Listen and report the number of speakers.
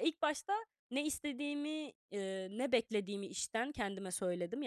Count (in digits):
1